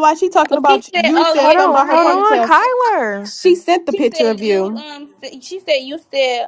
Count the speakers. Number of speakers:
three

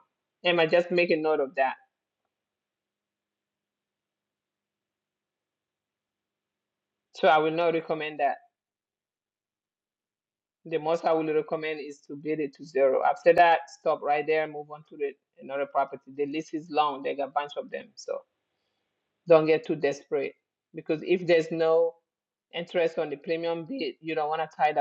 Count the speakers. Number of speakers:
one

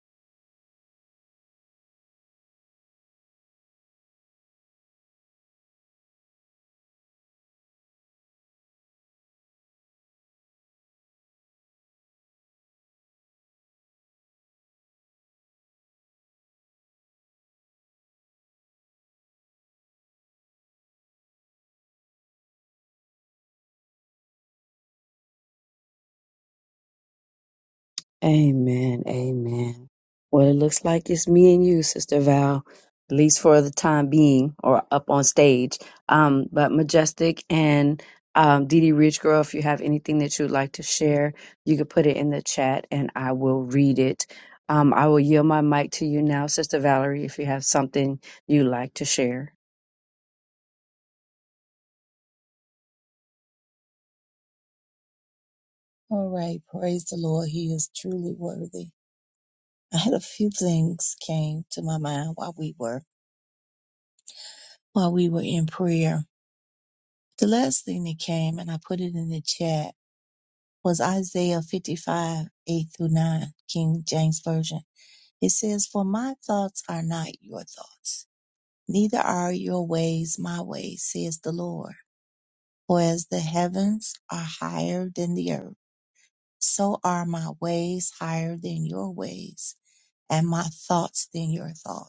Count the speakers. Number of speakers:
two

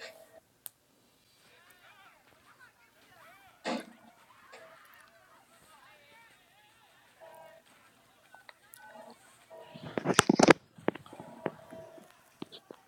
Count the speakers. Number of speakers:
zero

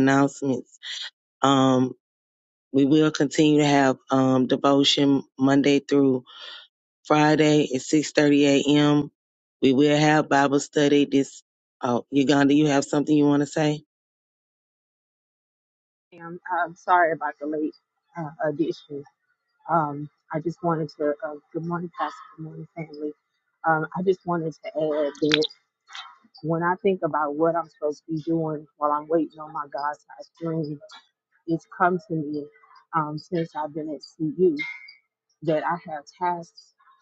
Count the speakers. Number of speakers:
two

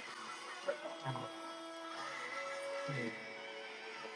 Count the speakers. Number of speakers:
zero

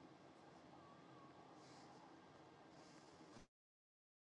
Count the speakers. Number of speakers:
zero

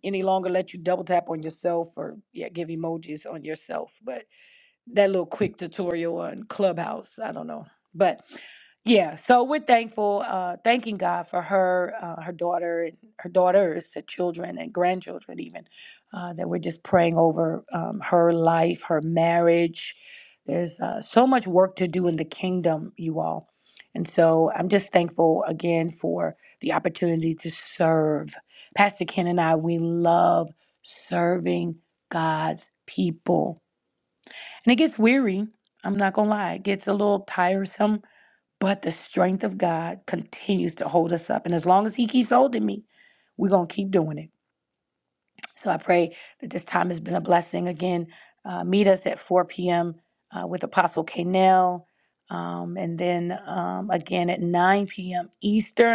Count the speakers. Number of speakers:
one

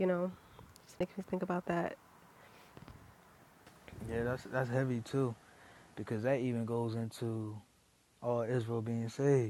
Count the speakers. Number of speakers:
two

